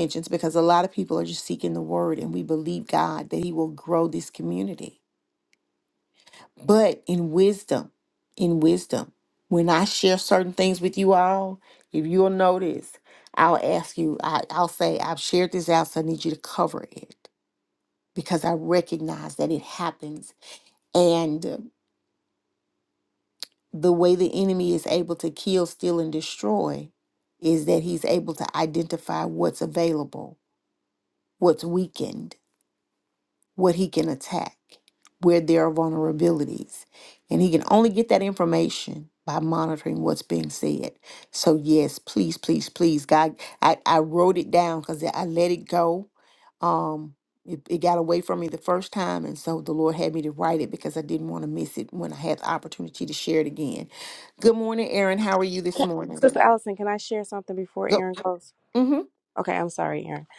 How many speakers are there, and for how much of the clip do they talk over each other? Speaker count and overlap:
two, under 1%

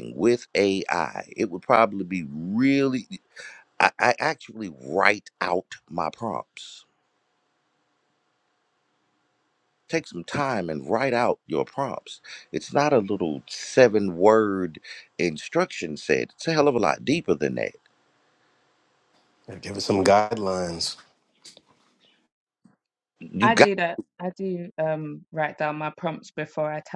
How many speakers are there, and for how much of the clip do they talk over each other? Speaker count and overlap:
three, about 1%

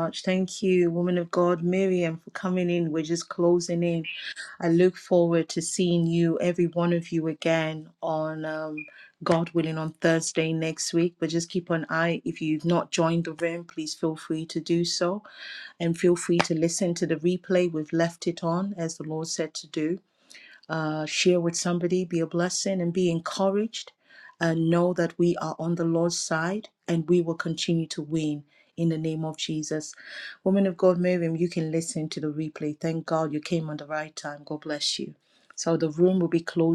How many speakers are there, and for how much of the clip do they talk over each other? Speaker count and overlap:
one, no overlap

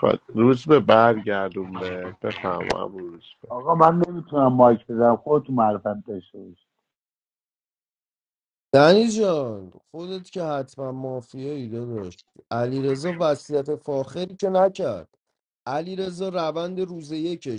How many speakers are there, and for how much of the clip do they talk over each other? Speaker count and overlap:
three, no overlap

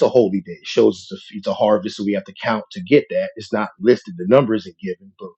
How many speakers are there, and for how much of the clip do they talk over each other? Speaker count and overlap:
one, no overlap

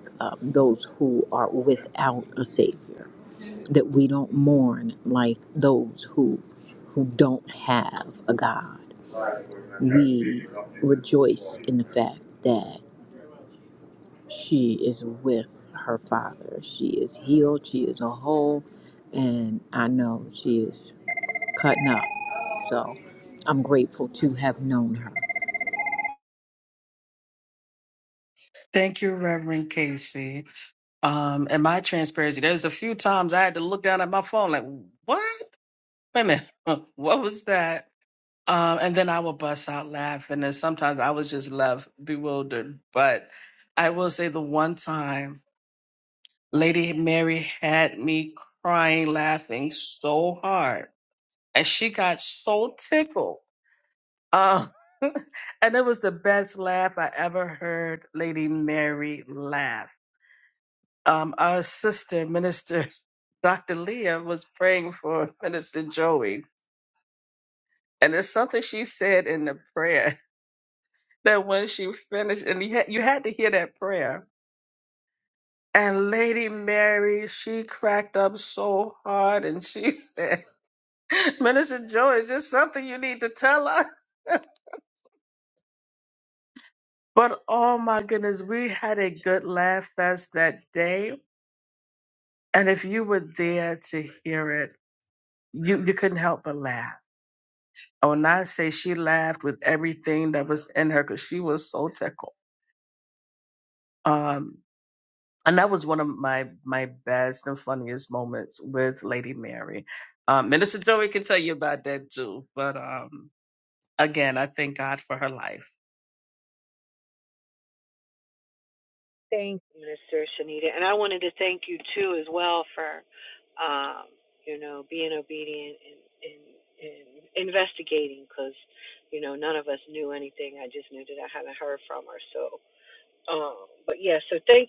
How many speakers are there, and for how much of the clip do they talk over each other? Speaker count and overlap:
three, no overlap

